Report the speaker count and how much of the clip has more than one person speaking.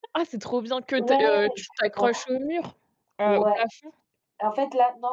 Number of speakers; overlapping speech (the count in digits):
2, about 13%